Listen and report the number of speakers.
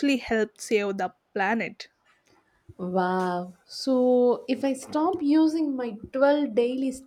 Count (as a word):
two